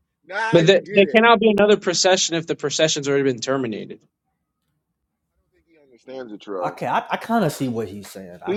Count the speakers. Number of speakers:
3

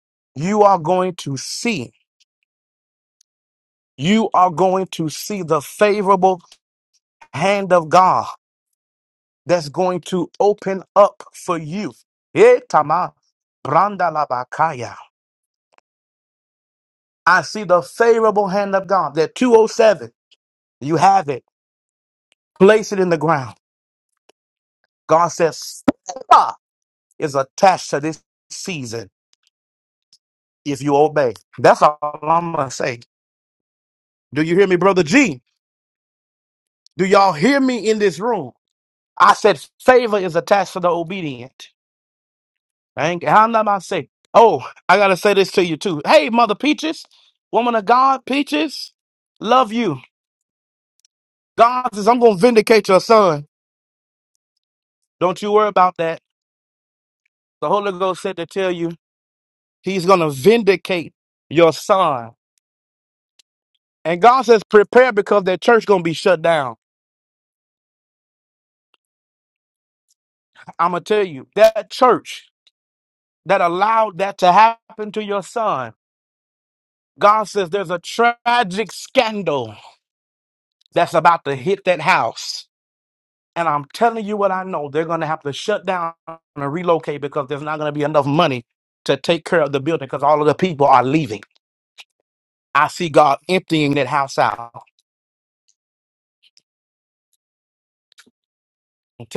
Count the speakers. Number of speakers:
1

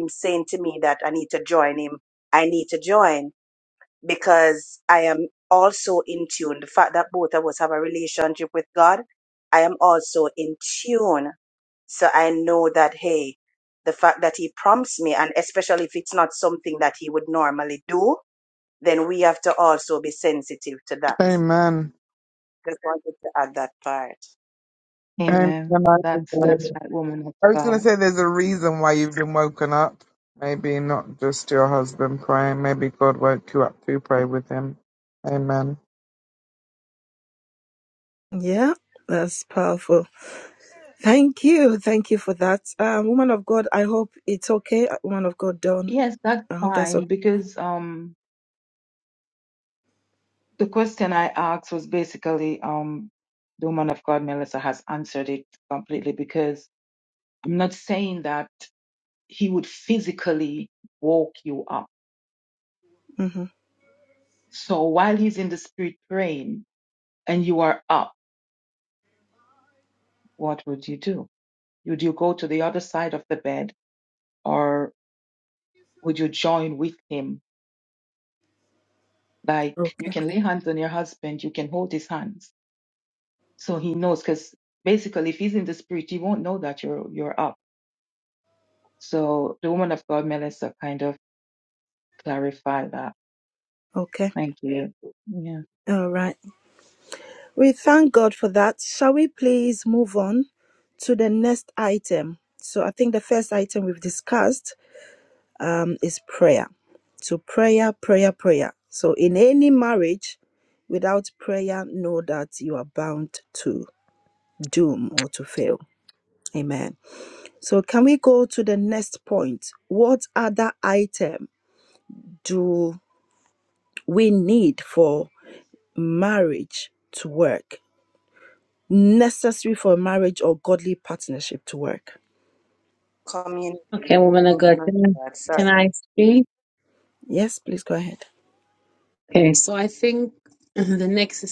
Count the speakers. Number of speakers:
5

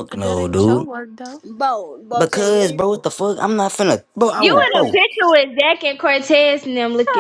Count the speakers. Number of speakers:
4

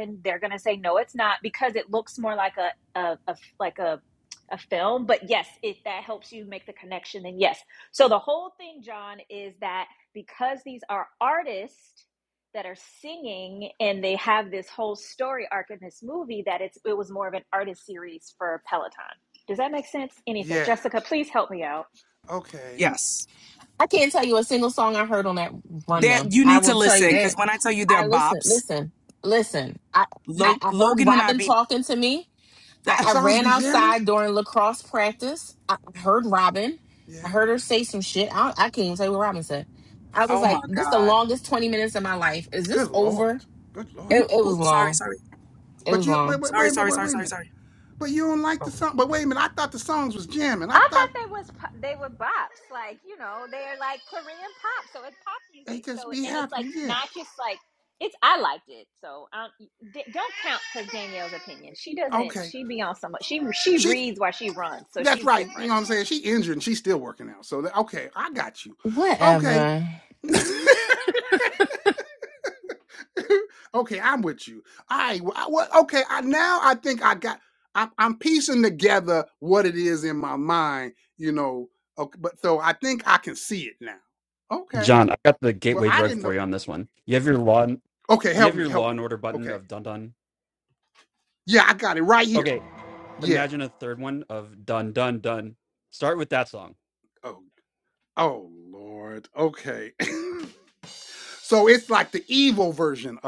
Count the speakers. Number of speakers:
5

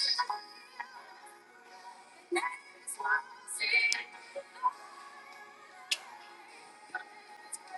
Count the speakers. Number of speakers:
0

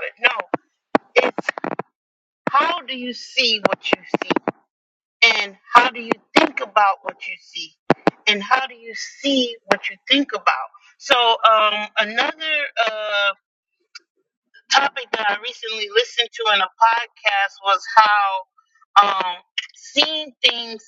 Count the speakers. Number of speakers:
1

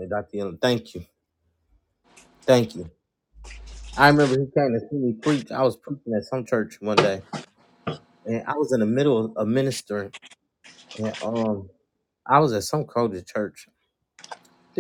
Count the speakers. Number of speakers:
1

